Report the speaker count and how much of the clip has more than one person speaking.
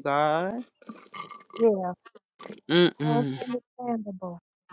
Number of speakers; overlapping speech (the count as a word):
two, about 5%